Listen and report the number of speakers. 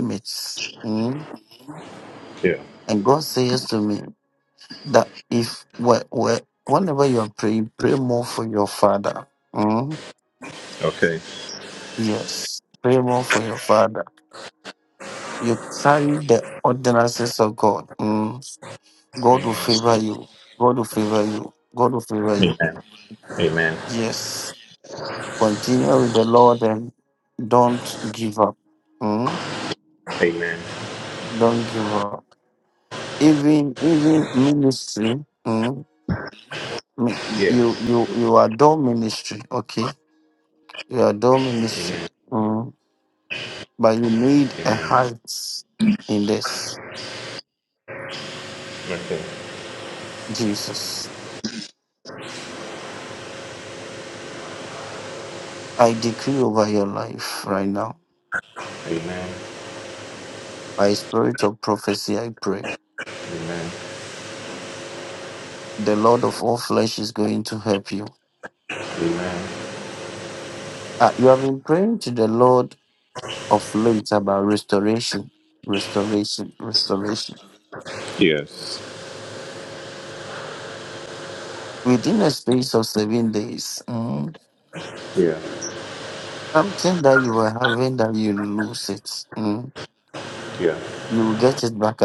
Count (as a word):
two